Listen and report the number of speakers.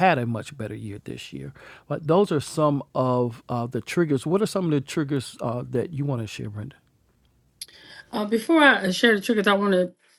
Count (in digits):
2